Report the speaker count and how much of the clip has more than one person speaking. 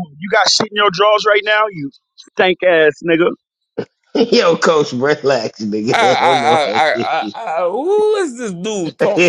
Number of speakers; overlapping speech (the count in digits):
3, about 10%